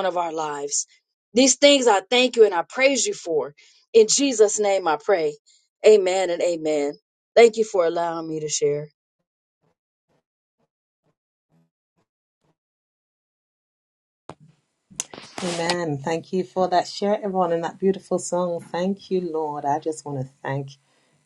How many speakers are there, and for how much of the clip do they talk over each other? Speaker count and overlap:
2, no overlap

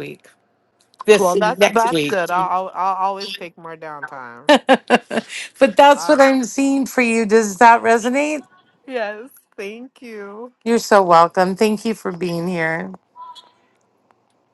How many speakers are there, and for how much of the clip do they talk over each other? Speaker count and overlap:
2, about 8%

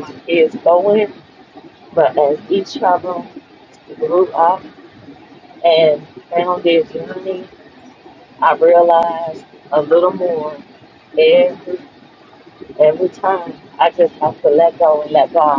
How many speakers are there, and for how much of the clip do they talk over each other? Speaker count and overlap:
1, no overlap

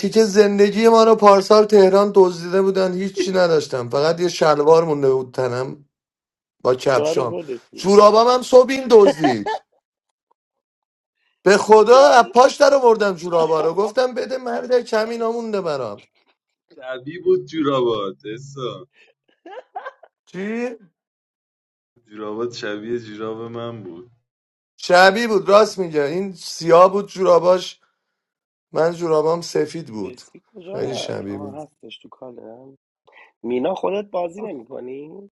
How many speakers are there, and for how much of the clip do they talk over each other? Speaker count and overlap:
3, about 7%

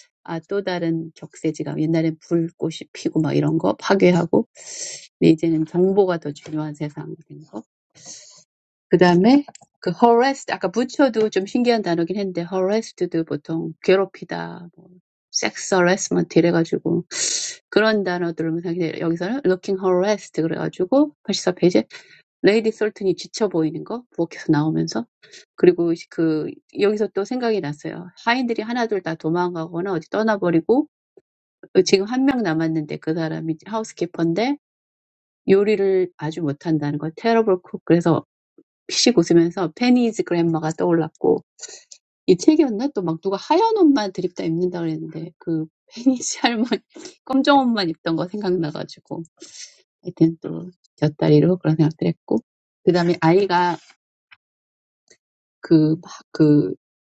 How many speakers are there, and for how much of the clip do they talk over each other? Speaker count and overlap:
1, no overlap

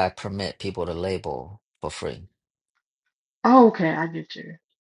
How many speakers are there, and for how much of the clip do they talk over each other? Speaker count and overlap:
2, no overlap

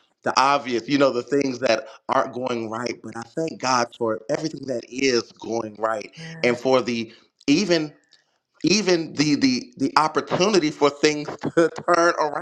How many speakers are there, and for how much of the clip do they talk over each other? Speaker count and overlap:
1, no overlap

